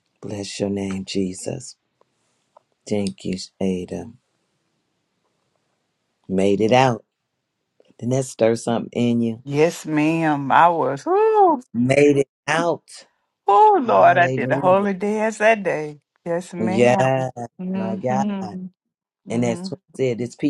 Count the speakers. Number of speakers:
2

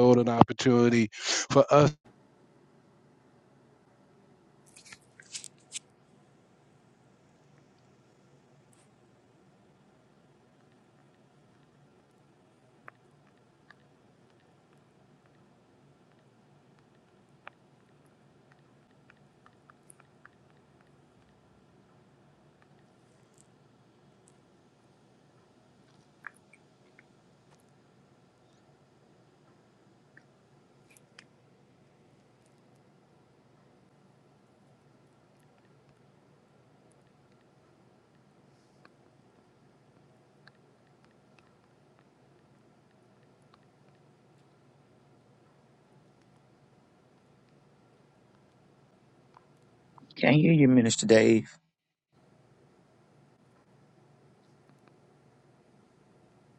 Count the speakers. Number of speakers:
2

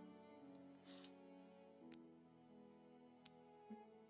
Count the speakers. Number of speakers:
0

